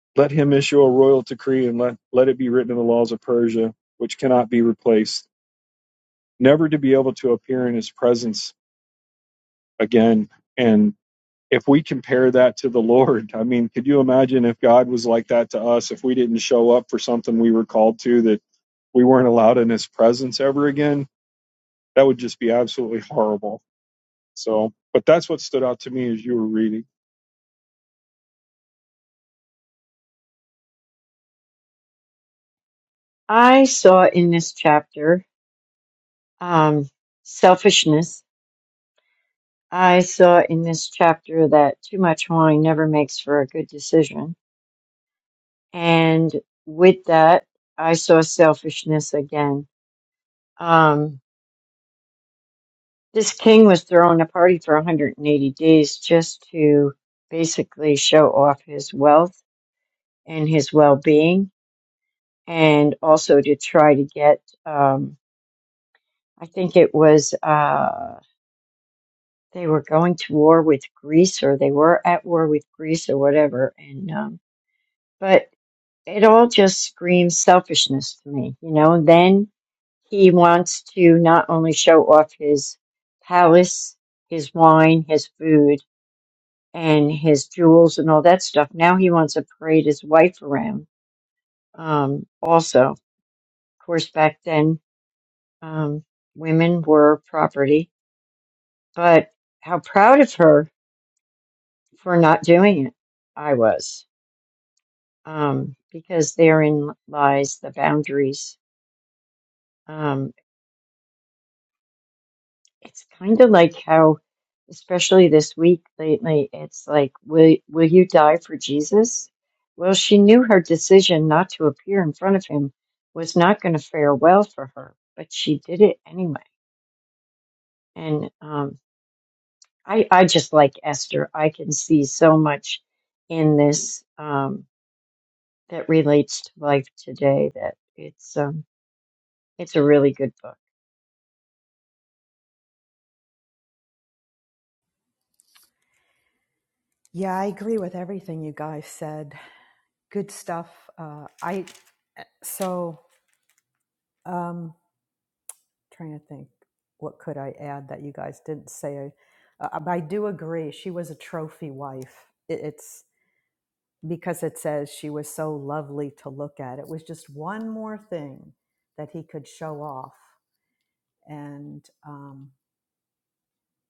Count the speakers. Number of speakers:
3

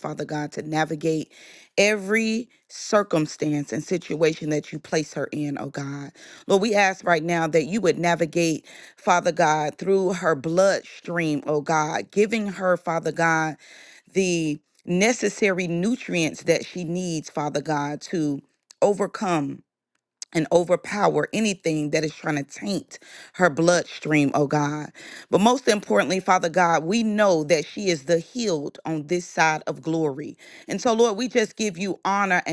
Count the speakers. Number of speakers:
1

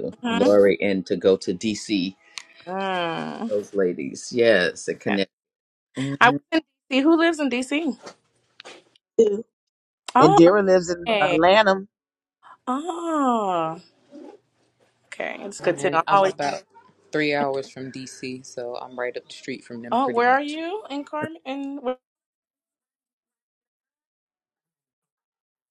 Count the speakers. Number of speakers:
4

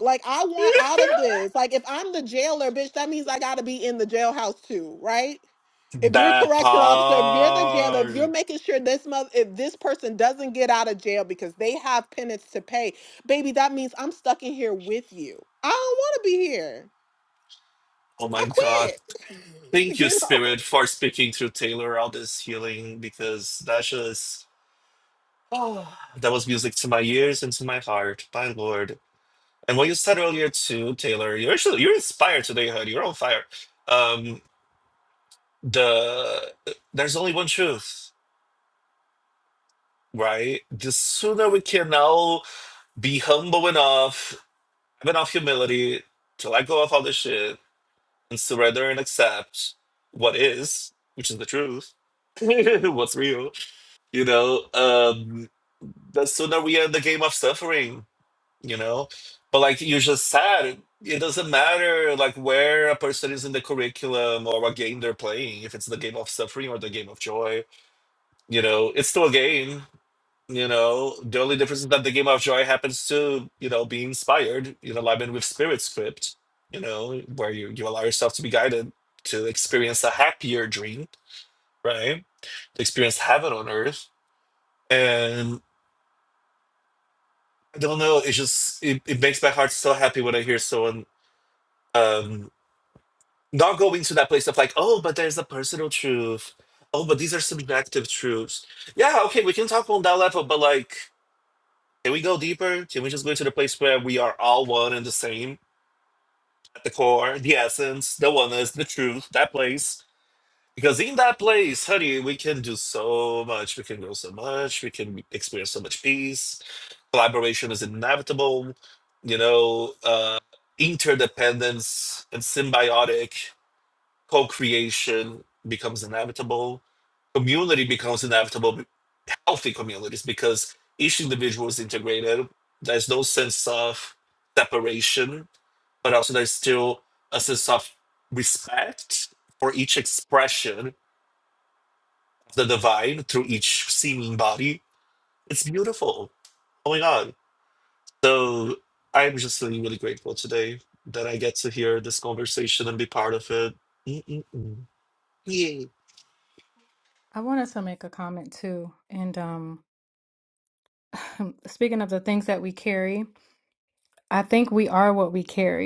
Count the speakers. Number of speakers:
3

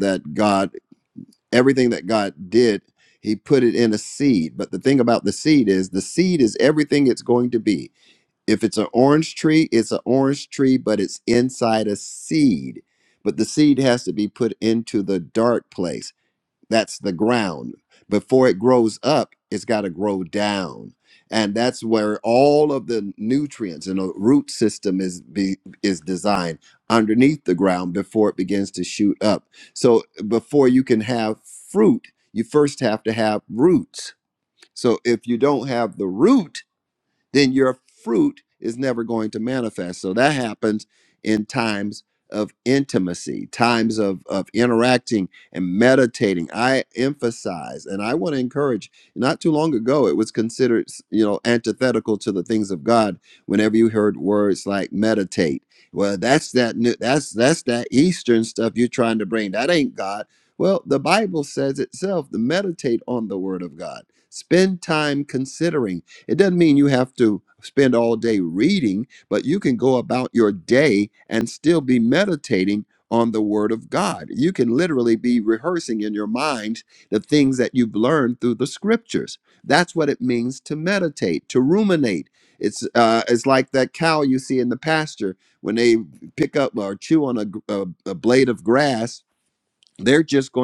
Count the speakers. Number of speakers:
1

